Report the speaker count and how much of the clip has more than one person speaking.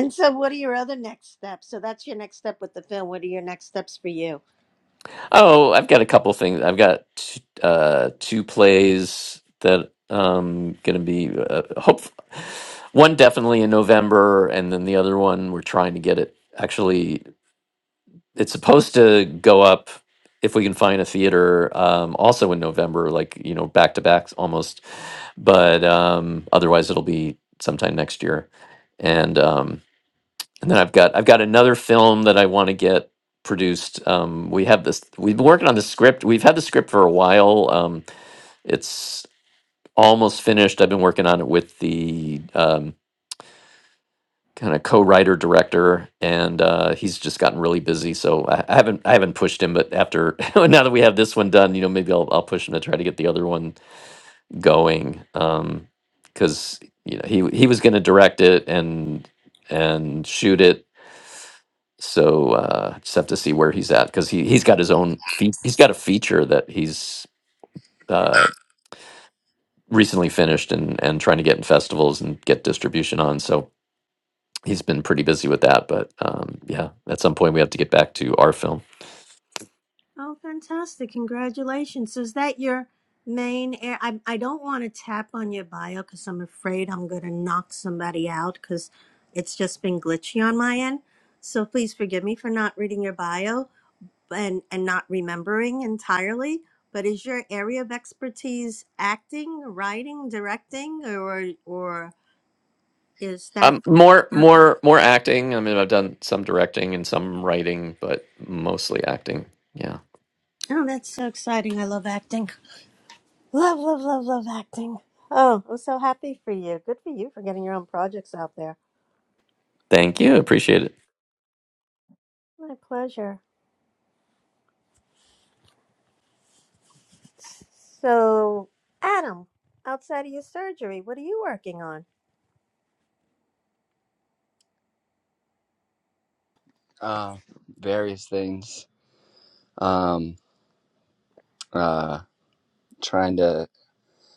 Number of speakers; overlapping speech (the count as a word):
three, under 1%